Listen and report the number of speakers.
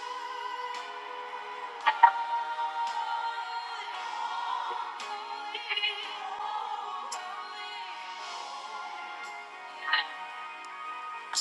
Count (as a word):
zero